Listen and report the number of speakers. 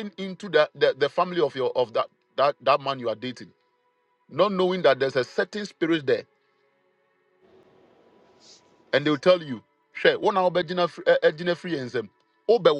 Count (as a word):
one